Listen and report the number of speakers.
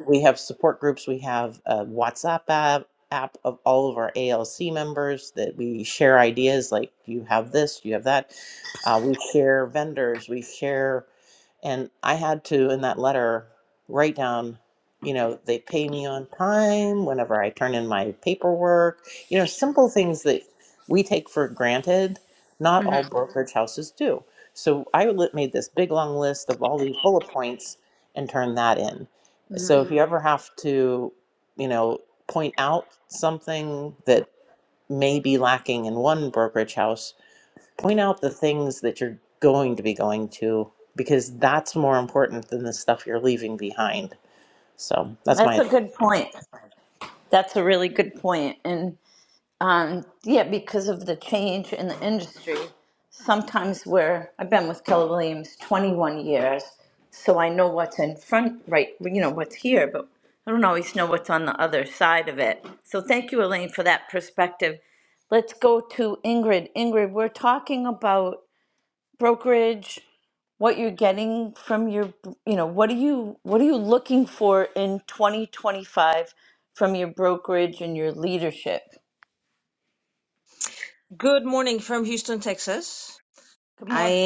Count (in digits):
3